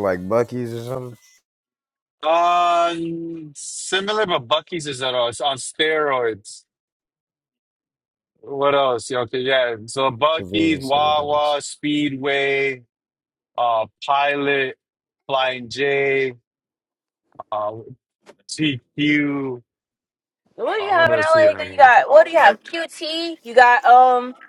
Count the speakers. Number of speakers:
3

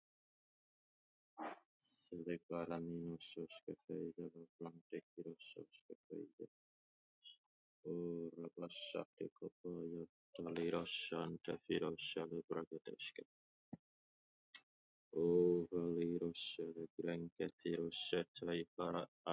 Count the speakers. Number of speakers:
1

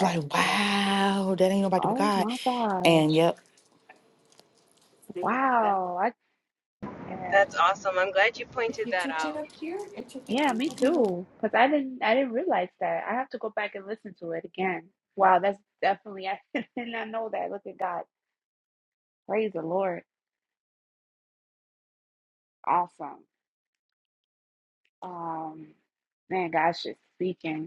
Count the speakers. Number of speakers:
3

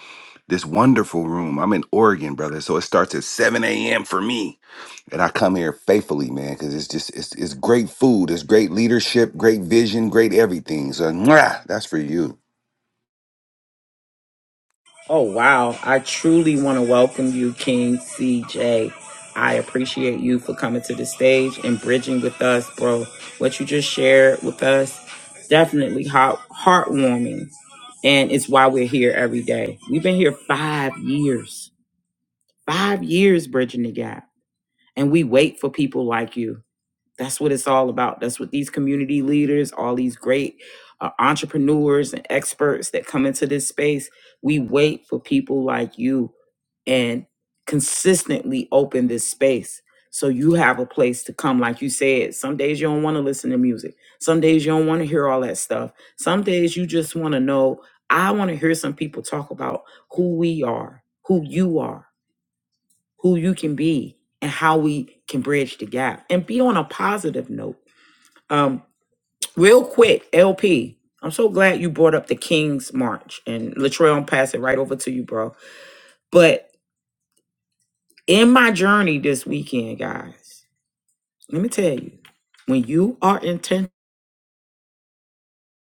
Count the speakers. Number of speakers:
2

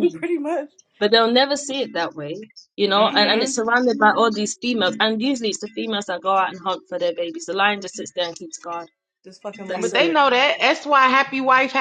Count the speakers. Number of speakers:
3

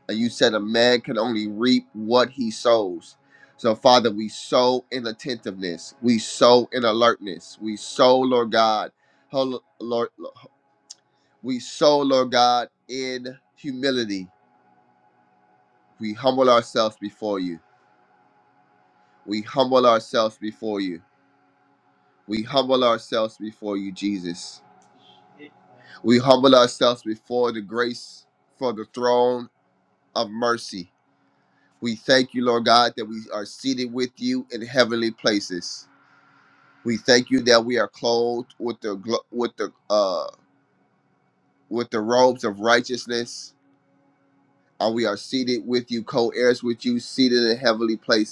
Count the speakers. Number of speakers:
1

